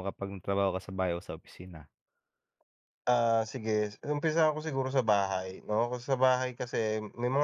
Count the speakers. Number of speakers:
two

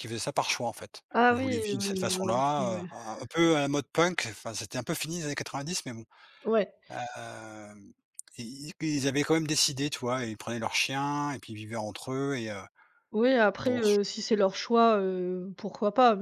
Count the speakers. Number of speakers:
two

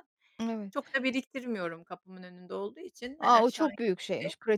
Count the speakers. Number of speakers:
two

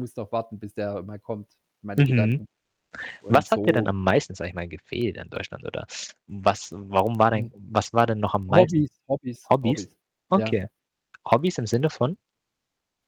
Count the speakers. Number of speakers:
two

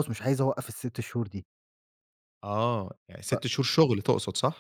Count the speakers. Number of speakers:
two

